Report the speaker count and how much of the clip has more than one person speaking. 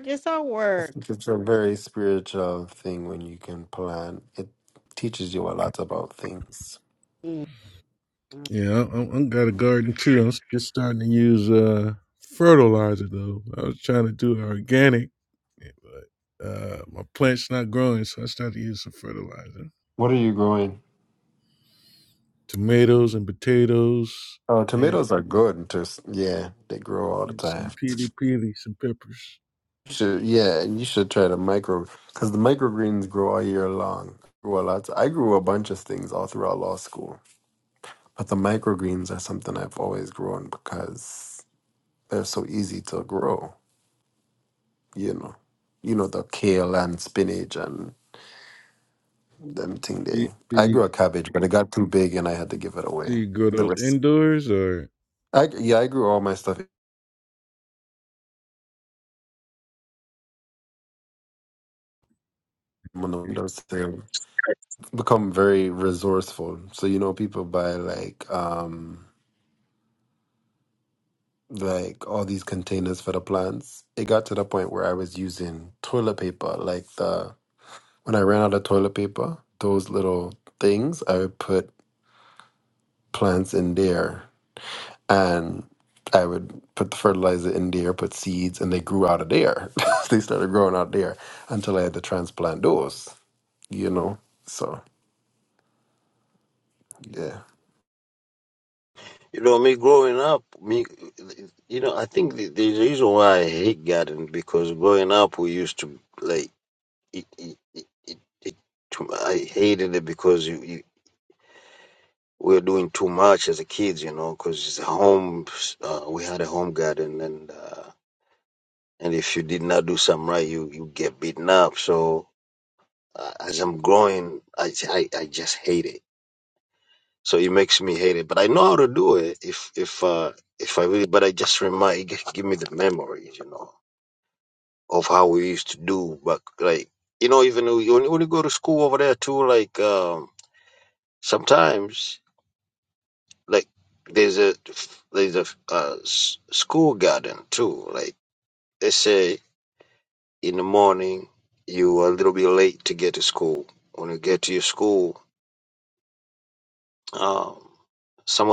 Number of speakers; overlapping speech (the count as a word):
four, about 1%